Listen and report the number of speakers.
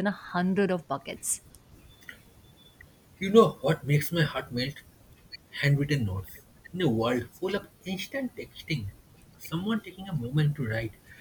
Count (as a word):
two